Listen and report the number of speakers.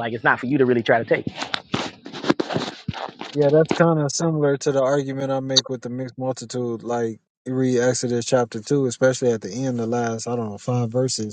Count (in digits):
2